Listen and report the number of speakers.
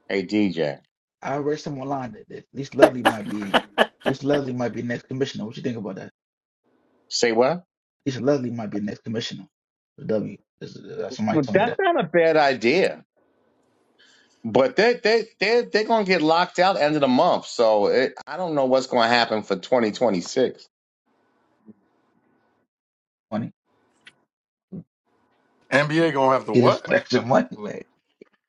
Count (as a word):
three